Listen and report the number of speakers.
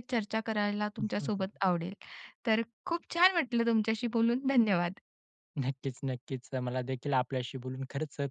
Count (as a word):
two